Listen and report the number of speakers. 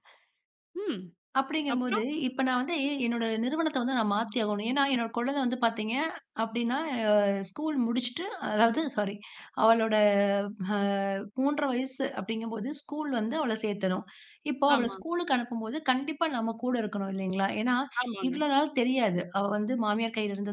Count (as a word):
two